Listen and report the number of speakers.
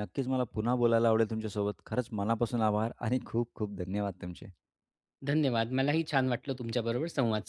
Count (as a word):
two